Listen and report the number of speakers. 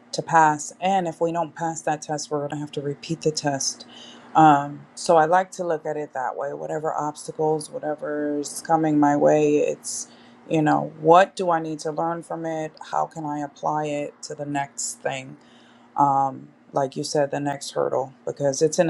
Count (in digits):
1